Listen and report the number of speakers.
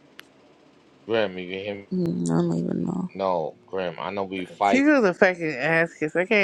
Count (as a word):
three